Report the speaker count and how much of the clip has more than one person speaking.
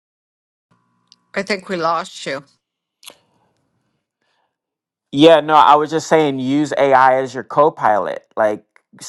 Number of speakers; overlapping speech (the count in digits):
2, no overlap